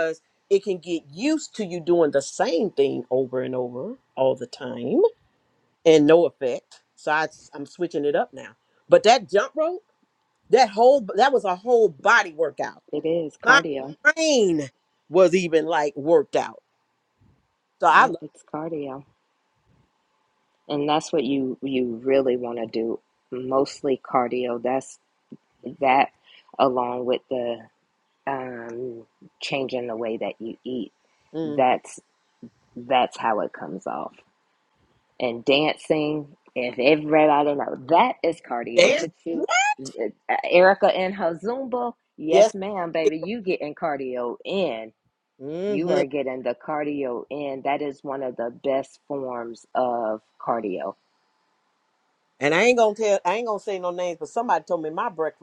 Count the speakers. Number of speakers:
2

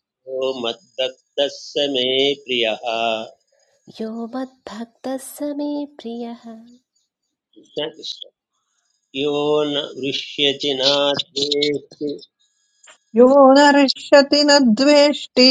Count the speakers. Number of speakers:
3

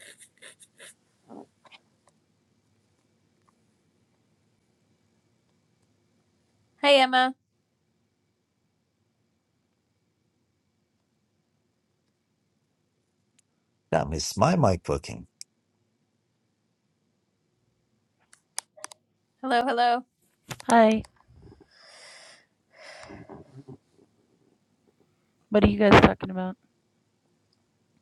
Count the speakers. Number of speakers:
3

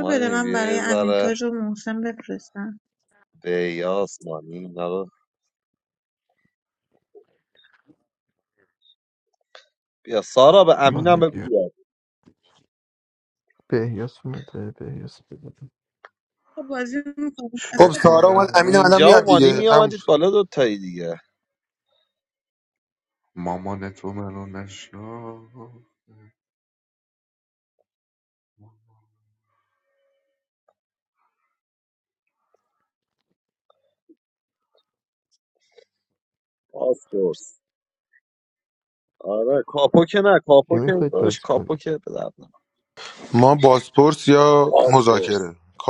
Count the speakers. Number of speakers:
5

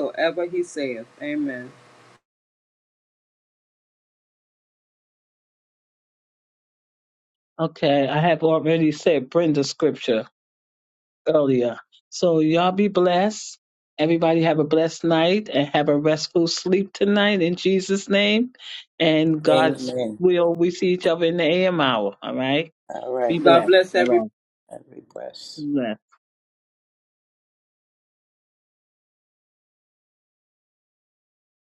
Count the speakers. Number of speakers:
3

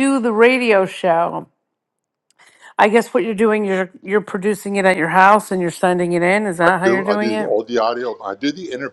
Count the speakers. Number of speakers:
2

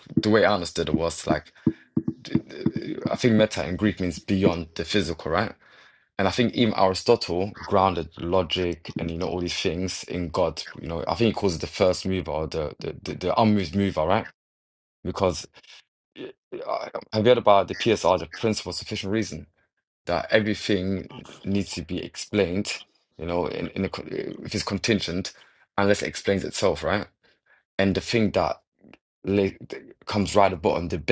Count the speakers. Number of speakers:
1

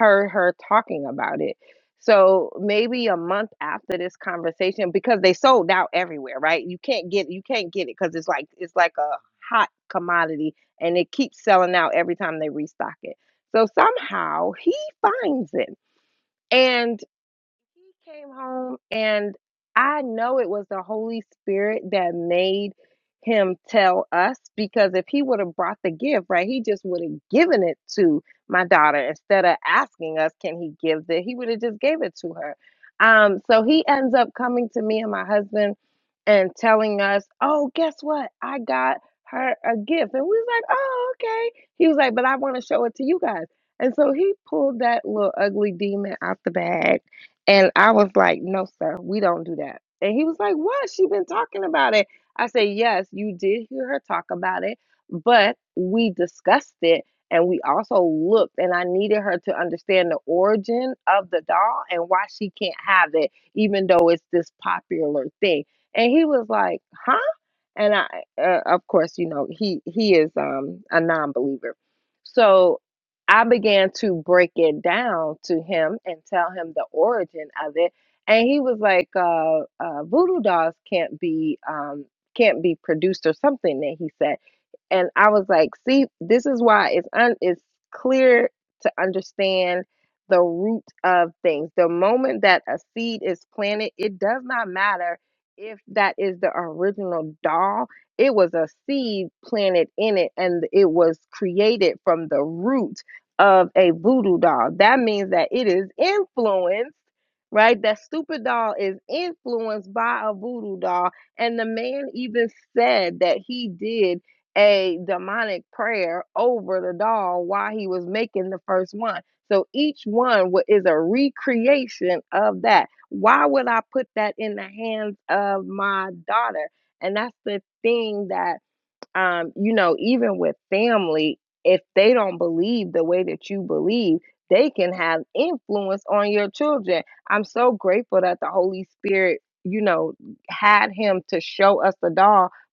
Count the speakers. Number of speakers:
1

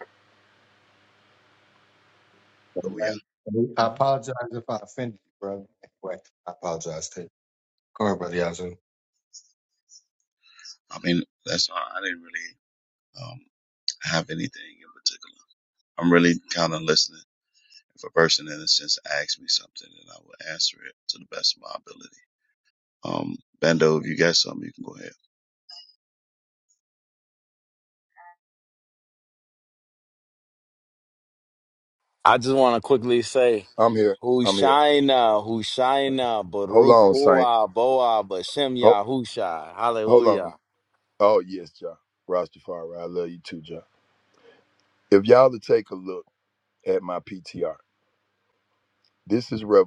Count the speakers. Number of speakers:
4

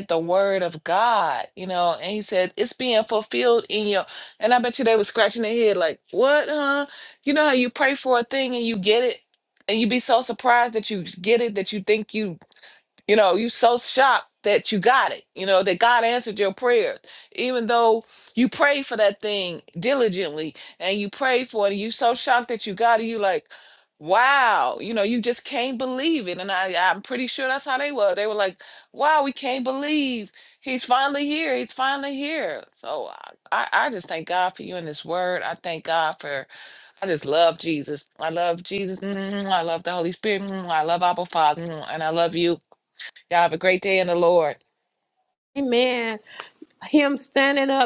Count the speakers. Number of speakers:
2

